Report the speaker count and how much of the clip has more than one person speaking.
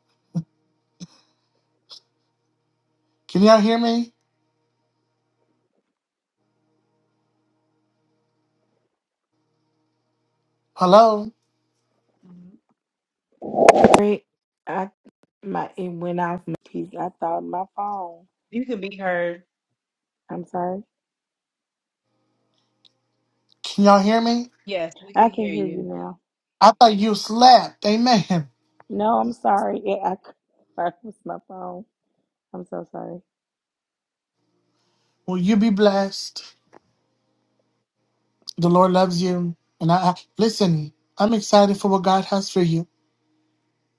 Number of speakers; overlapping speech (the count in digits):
3, about 2%